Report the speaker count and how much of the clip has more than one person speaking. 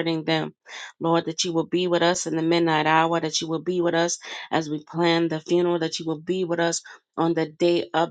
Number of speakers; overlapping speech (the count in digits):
1, no overlap